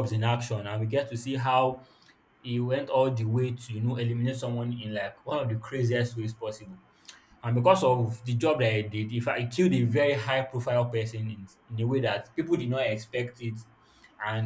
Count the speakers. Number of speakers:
1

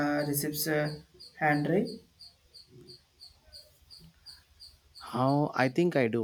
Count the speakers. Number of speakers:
2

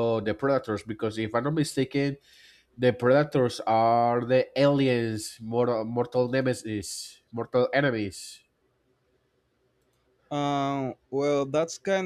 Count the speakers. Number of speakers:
2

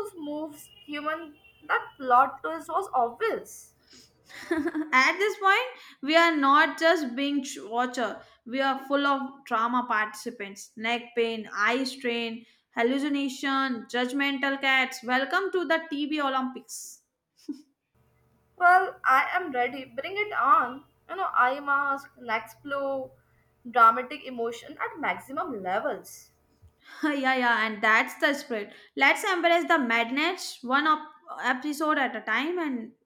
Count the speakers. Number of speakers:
2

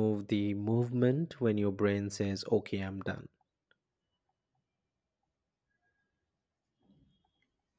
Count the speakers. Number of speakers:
1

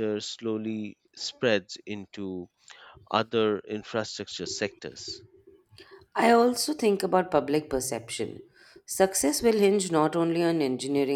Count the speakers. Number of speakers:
2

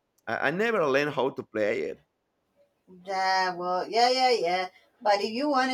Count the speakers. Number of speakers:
2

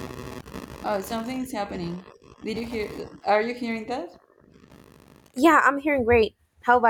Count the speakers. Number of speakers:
2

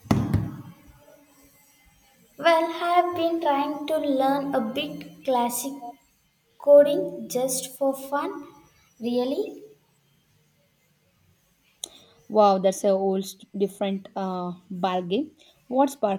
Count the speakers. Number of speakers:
2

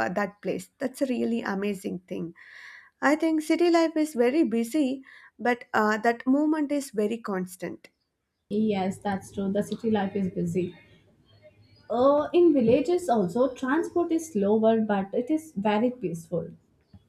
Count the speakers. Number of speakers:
2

